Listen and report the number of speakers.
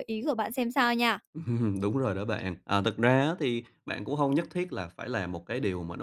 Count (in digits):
2